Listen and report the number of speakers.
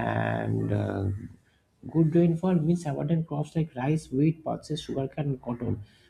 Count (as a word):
one